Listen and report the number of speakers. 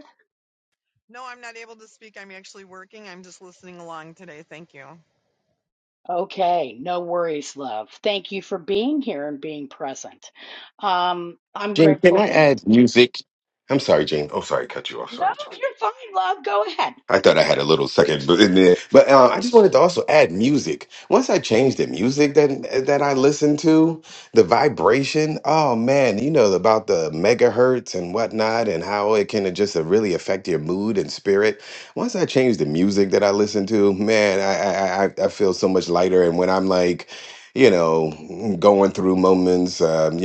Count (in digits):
3